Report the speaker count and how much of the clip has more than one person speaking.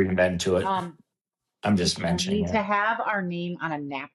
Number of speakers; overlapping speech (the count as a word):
two, about 22%